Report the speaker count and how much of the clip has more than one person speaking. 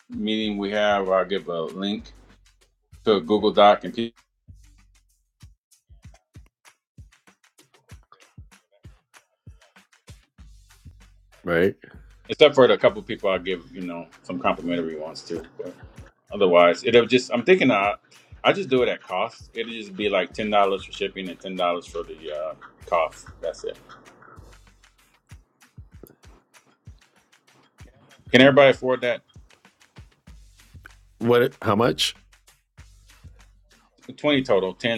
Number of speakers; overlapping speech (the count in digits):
2, about 1%